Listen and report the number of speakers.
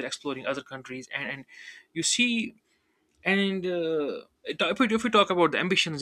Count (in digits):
1